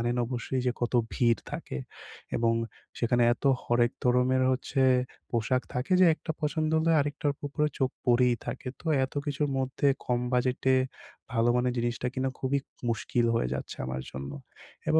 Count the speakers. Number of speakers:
1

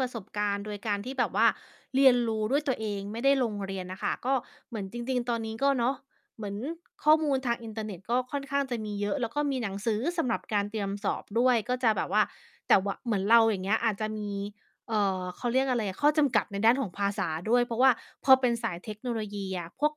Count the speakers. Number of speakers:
1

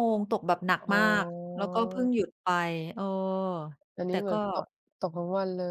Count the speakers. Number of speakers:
2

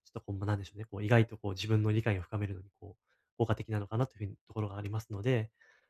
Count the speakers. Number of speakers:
1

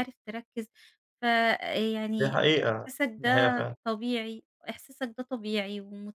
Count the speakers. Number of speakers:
2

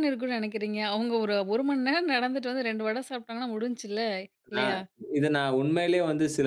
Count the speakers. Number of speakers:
2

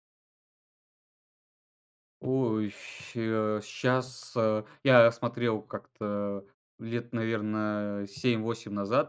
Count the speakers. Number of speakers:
1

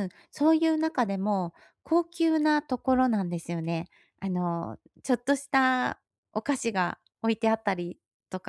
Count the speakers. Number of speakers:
1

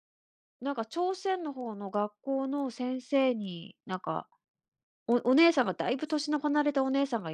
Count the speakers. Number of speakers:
1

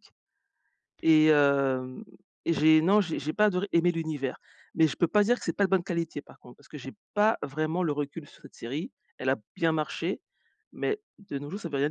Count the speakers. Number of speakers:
1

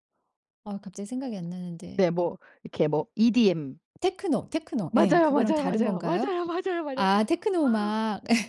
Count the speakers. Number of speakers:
2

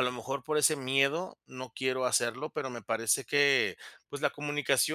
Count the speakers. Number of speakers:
1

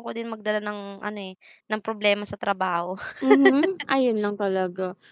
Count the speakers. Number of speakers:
2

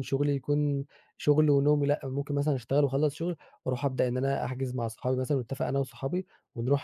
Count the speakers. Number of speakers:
1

